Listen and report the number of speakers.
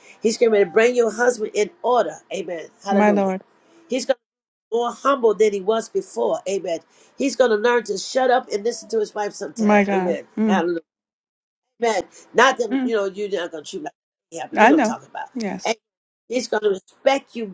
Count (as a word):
two